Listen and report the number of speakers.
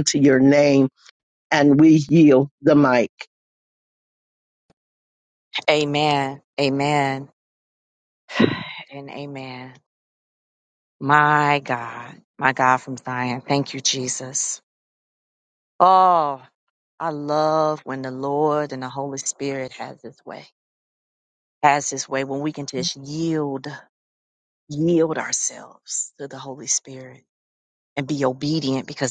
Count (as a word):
two